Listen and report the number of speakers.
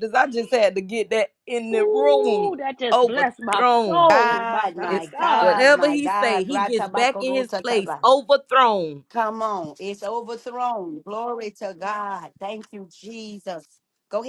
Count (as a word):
three